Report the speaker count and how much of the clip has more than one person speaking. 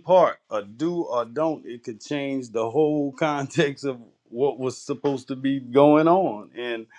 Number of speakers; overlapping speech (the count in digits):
1, no overlap